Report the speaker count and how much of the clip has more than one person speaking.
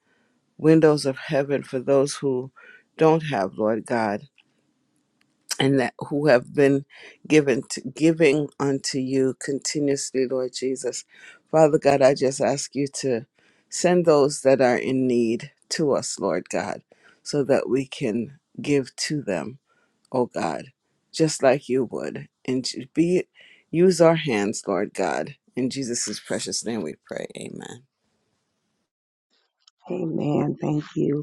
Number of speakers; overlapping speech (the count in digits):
2, no overlap